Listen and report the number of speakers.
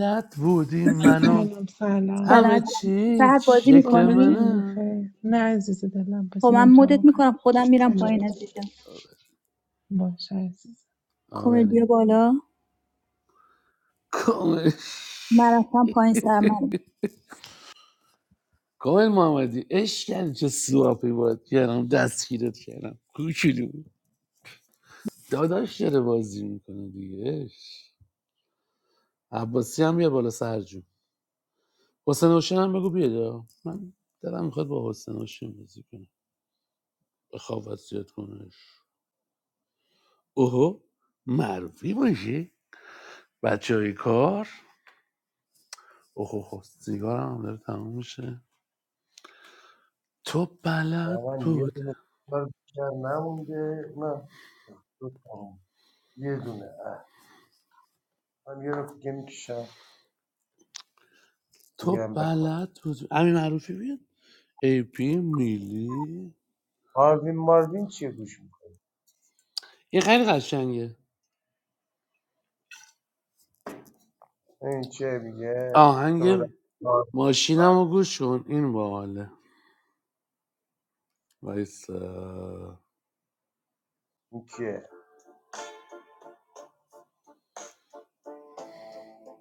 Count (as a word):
four